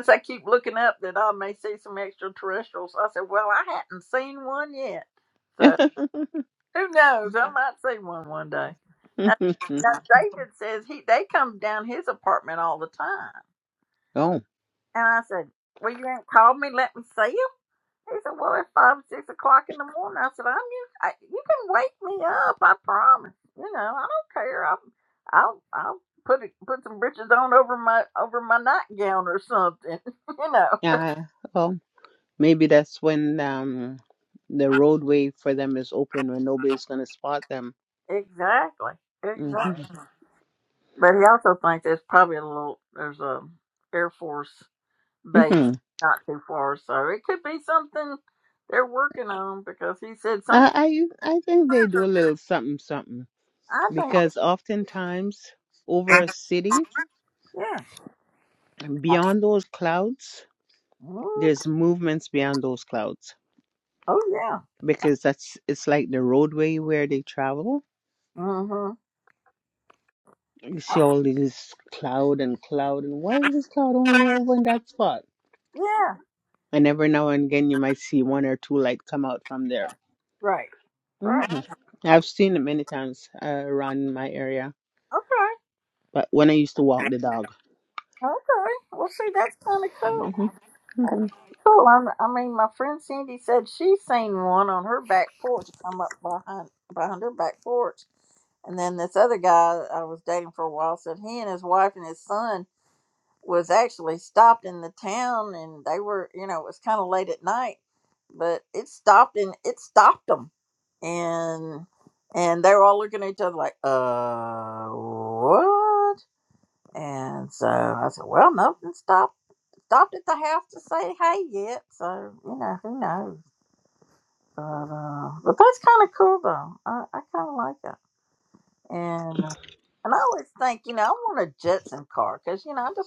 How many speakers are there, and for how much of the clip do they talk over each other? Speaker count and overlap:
2, about 1%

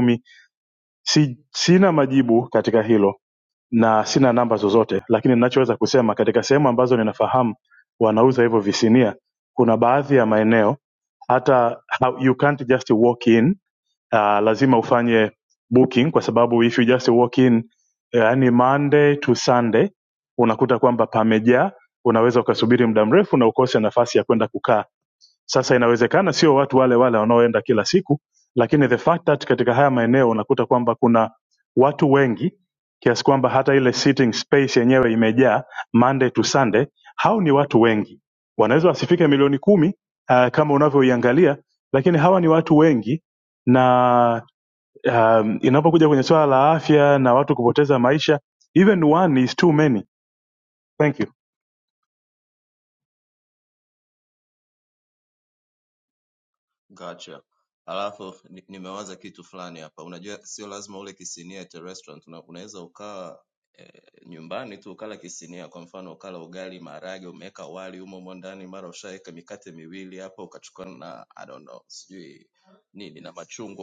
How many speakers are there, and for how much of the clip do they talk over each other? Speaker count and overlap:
2, no overlap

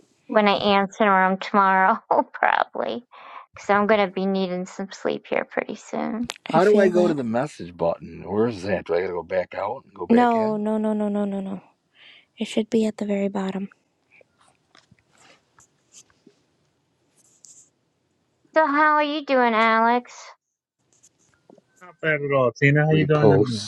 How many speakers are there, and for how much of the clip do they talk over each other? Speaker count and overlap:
4, about 8%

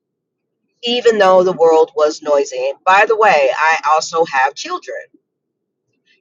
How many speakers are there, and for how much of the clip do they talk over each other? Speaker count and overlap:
1, no overlap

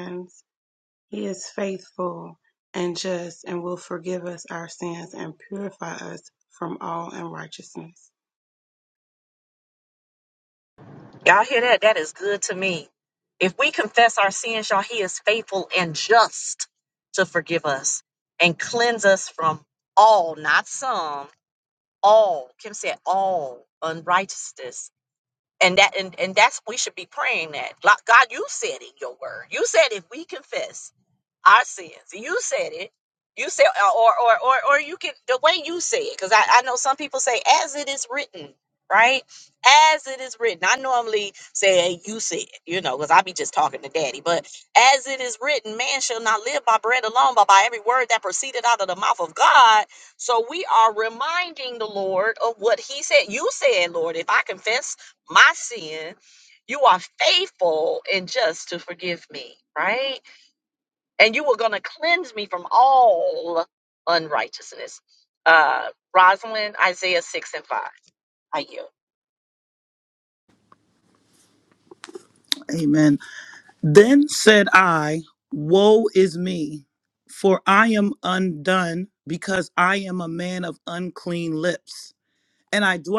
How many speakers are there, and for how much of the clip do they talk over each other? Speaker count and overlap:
3, no overlap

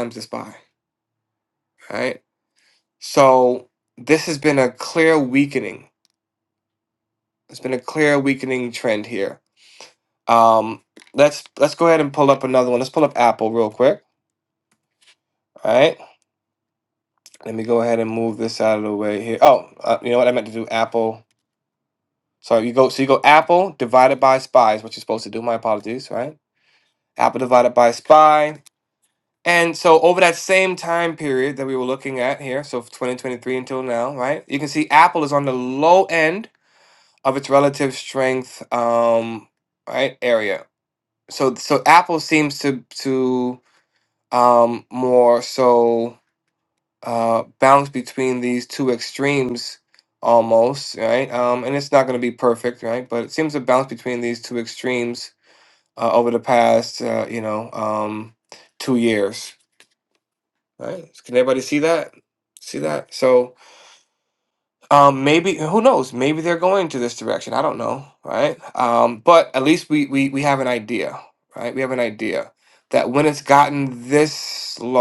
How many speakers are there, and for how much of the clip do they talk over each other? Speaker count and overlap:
1, no overlap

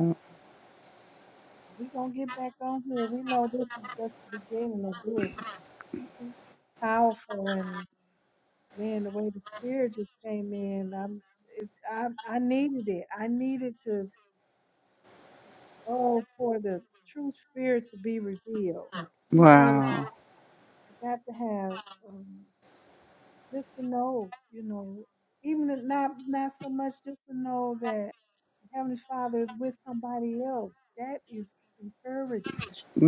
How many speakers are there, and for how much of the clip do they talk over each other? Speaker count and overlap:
2, about 2%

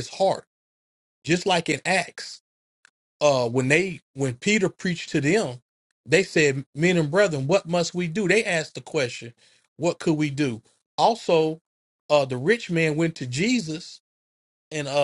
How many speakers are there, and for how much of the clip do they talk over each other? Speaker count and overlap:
1, no overlap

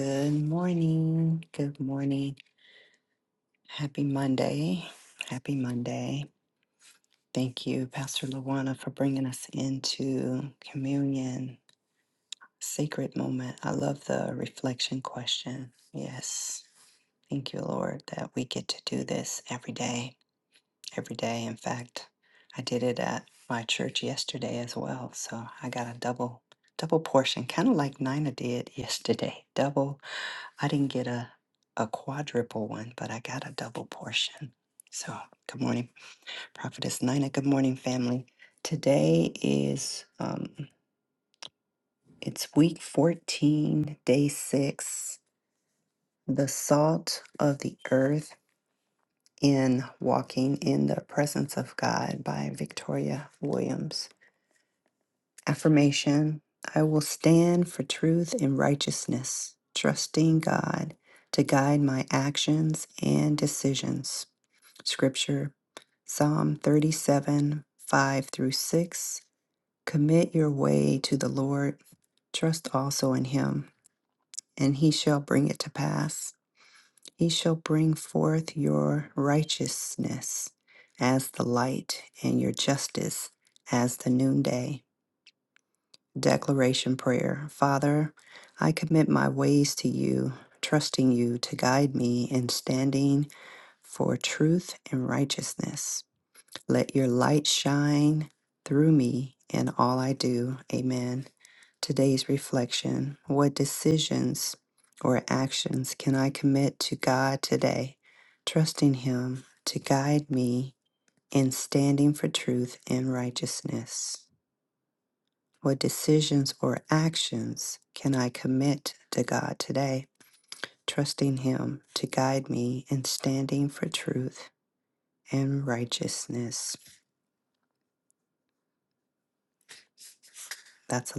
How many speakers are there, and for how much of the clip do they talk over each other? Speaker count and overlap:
1, no overlap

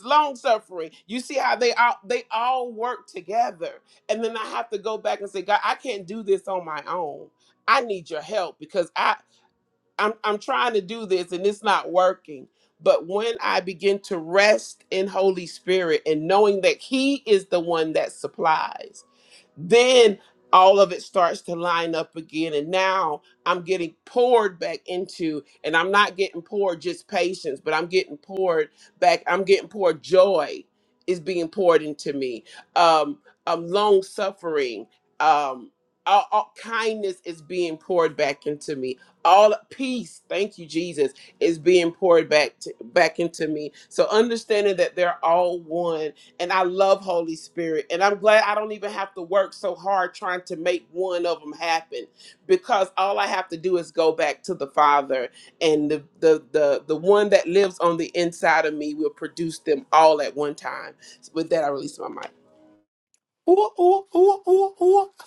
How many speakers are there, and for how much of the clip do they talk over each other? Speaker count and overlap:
2, no overlap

